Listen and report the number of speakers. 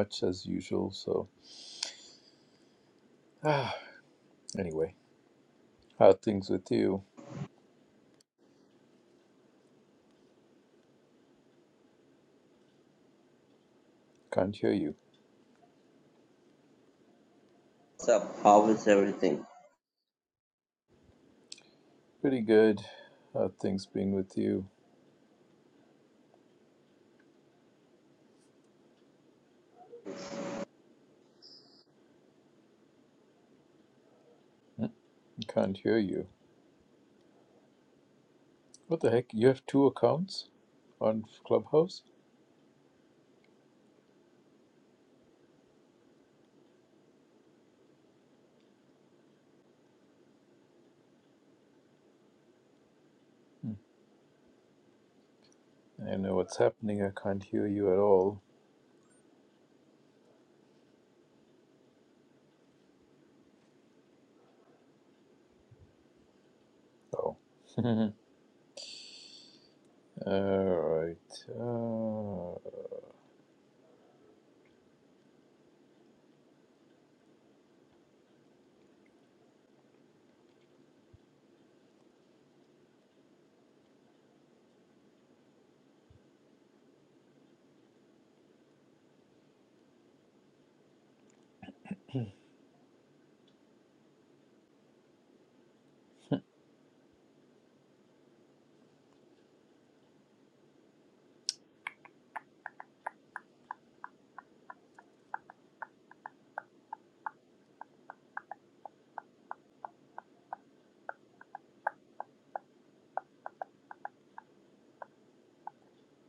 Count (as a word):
two